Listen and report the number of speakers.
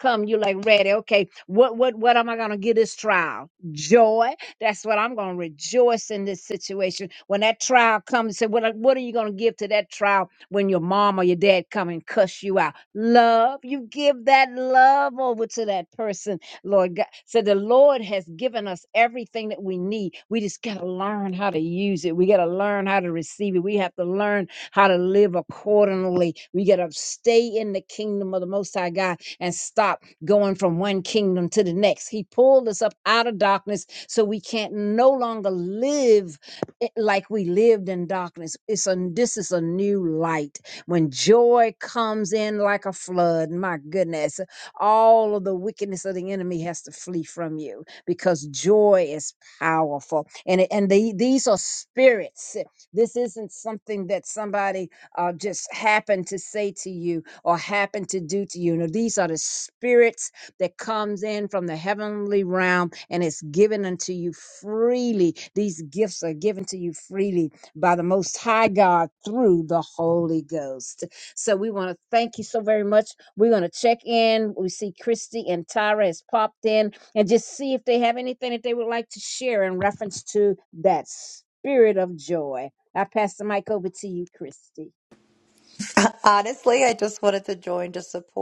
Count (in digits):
2